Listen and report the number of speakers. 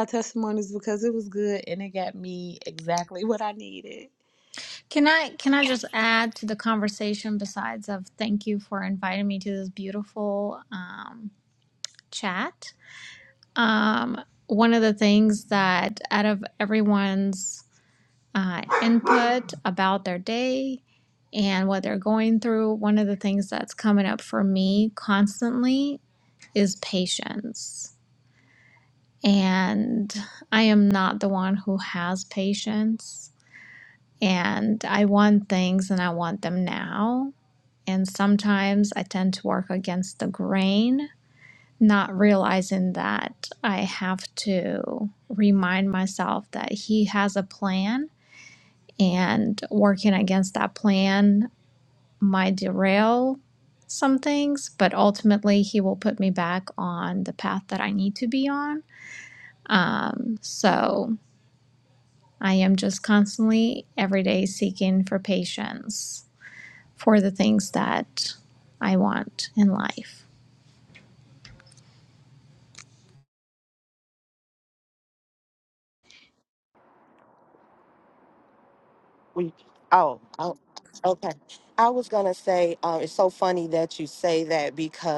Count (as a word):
three